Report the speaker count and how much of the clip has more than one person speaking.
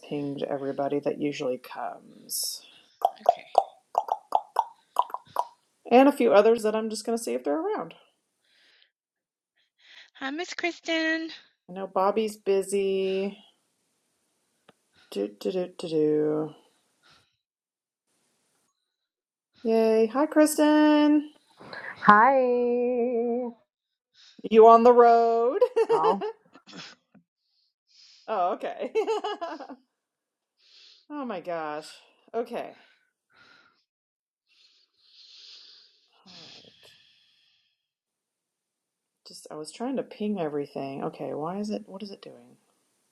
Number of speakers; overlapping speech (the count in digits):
3, about 1%